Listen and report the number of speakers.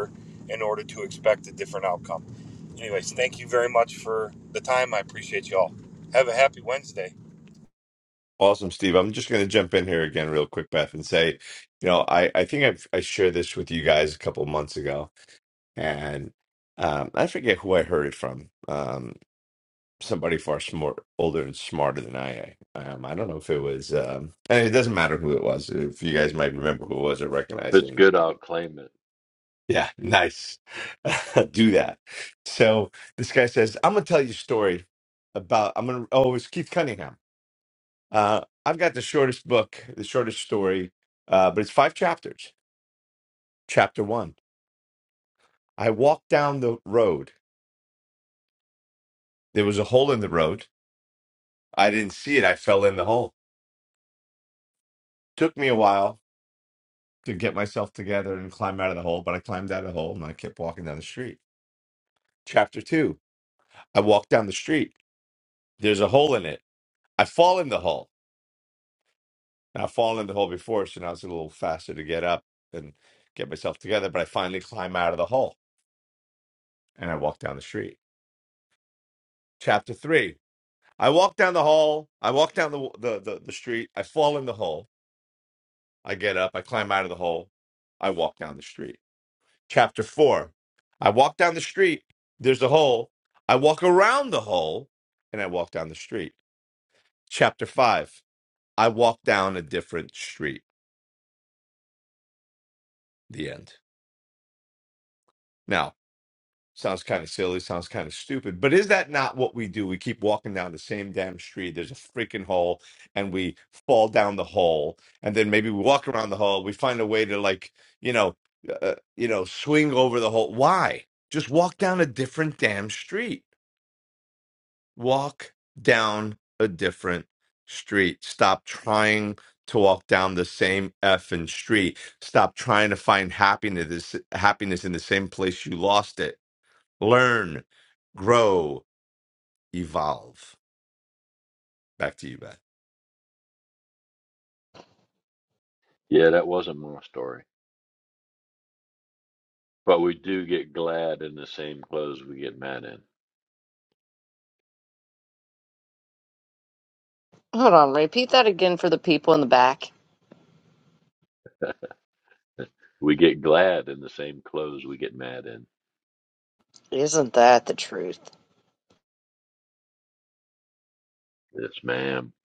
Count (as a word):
four